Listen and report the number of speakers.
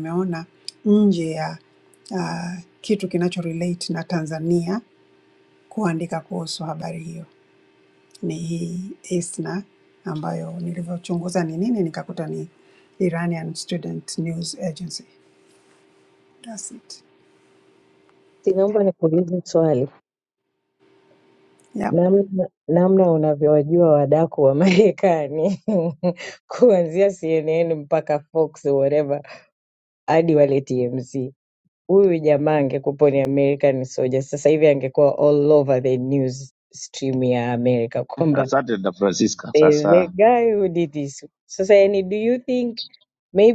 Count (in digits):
3